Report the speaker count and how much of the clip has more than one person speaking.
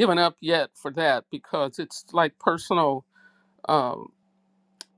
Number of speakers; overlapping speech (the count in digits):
1, no overlap